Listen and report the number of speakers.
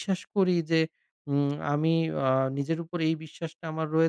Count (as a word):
one